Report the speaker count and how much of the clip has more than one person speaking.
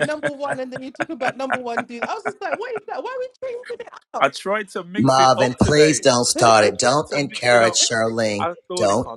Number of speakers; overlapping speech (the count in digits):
3, about 34%